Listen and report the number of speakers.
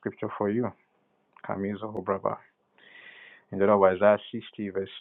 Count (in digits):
1